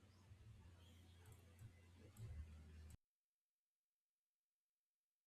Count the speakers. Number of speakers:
0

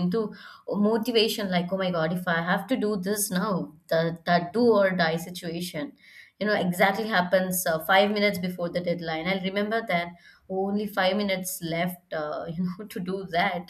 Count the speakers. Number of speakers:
1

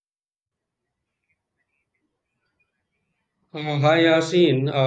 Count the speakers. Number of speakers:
1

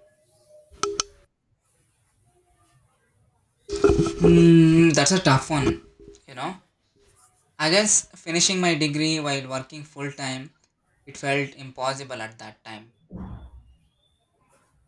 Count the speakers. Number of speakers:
1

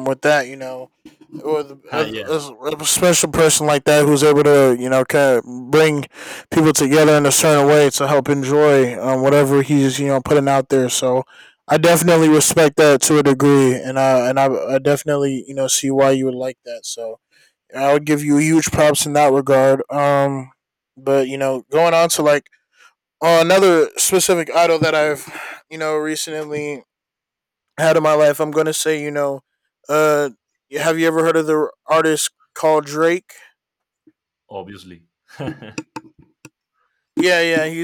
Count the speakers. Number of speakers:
2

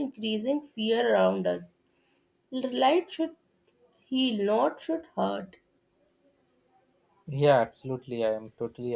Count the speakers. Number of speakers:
2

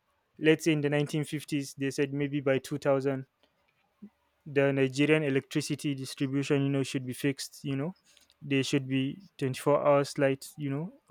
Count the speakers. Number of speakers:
1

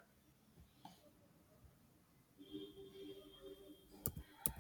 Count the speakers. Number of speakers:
0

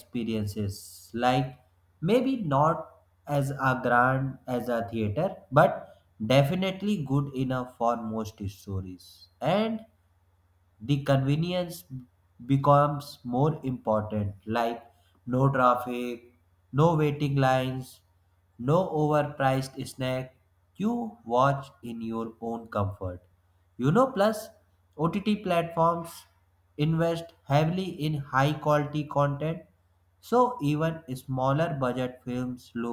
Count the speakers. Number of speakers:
1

